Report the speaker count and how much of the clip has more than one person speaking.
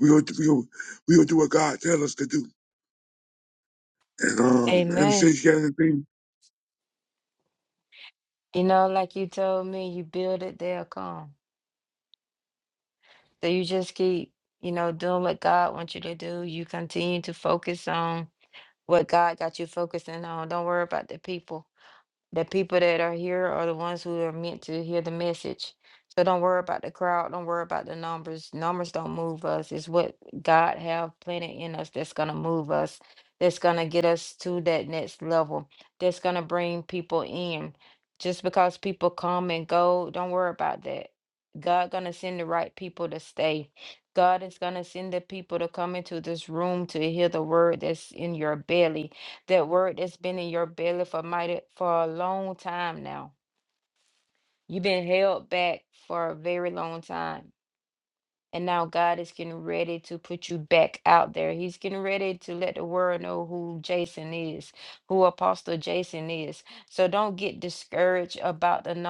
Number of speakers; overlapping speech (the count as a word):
two, about 1%